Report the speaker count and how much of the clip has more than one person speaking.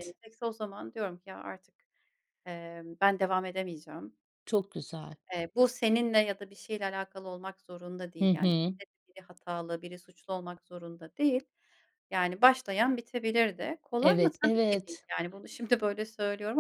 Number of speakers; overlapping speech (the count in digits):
2, about 8%